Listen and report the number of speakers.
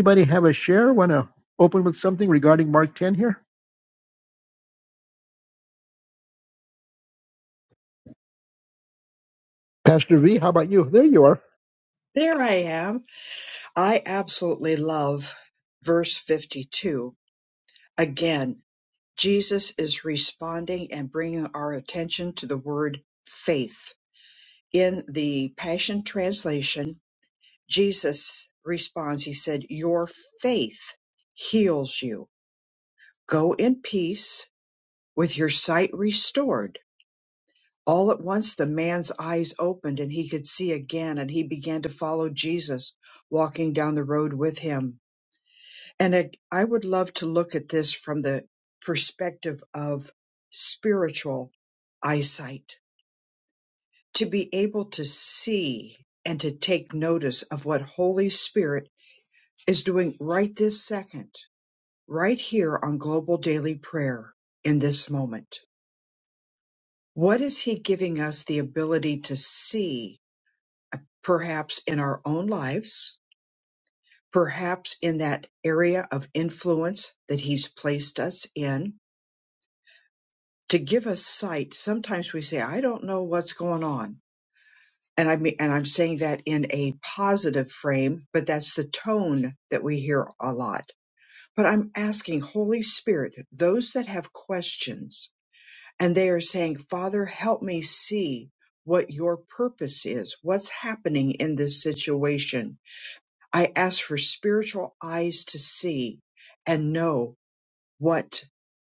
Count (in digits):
2